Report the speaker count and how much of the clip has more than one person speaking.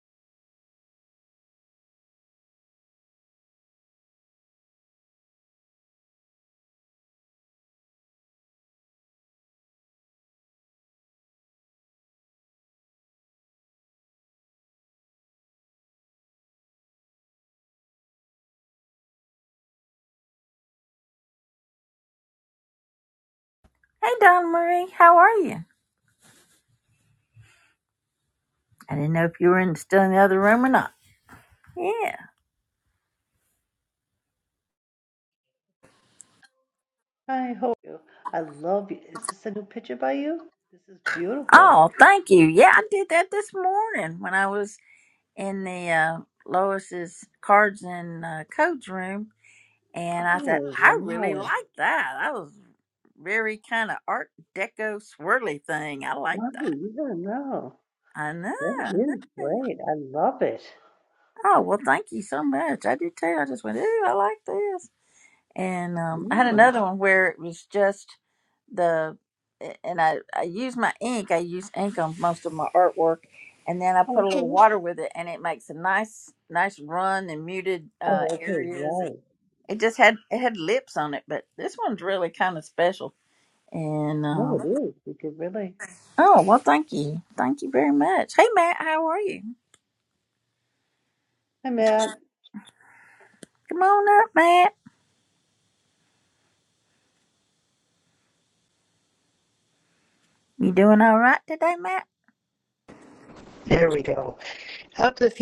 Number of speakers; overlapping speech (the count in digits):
3, about 5%